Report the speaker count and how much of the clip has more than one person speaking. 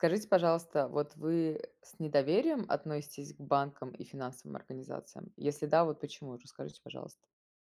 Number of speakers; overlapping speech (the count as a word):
one, no overlap